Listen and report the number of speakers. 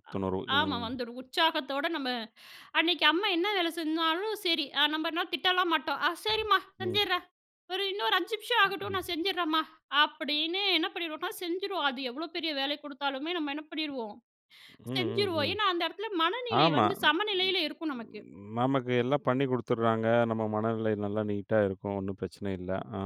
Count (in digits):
2